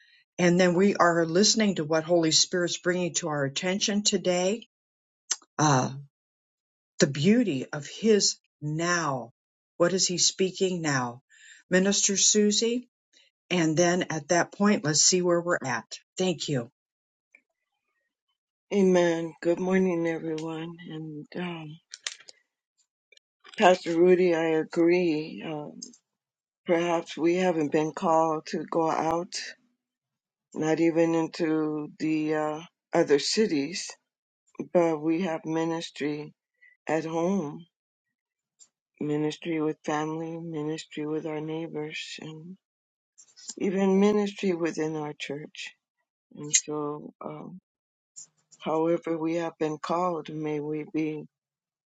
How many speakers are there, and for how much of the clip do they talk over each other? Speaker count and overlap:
2, no overlap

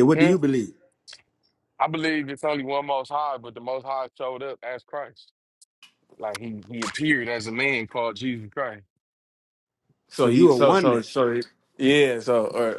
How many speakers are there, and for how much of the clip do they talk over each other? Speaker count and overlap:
3, about 8%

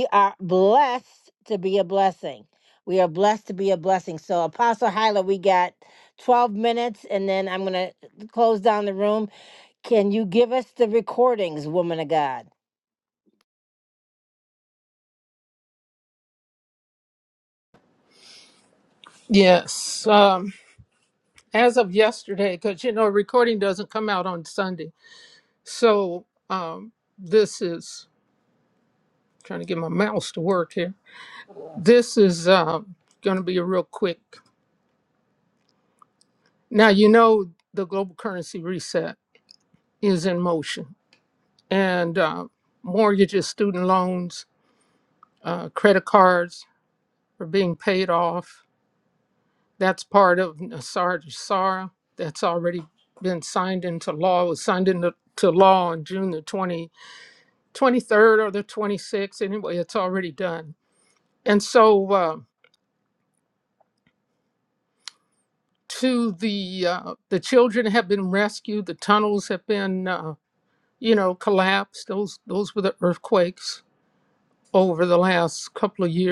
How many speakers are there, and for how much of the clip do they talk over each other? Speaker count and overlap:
2, no overlap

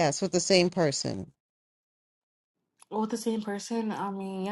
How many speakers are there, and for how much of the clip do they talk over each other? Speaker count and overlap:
2, no overlap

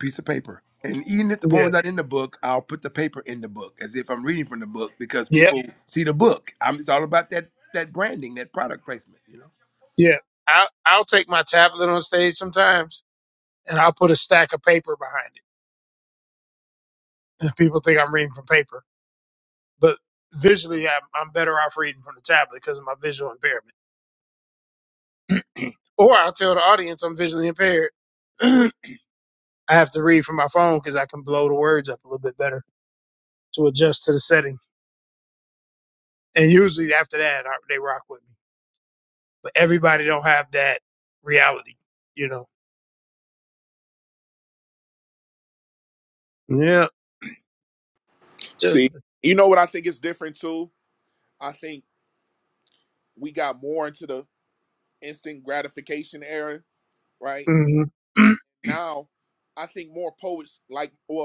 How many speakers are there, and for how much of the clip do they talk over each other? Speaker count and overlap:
3, about 1%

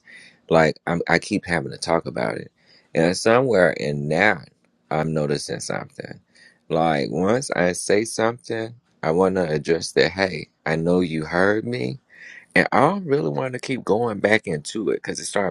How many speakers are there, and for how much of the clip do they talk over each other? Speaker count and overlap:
1, no overlap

